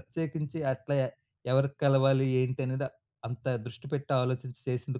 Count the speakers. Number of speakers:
one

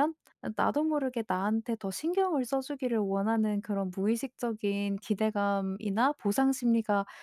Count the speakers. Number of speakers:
one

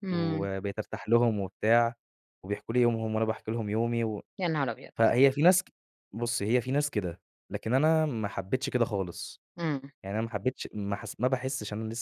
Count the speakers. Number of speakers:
two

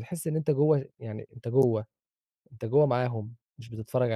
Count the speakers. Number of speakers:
one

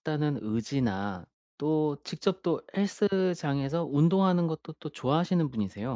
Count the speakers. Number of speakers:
one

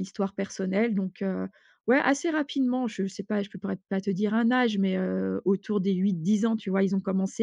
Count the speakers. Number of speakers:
one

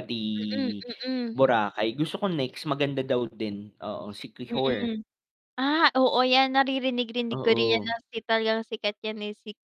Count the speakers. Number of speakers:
two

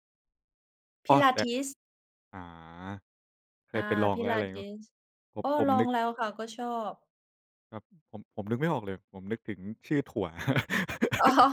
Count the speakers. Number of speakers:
two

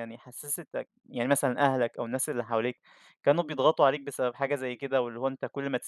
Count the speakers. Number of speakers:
one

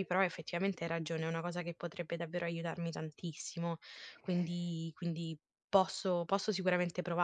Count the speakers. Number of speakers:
one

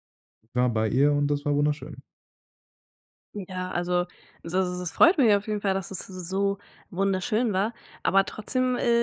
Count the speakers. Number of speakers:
two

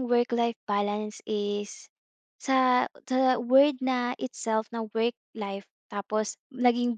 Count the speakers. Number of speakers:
one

